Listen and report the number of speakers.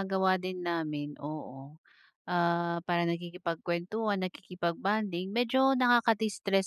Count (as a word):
one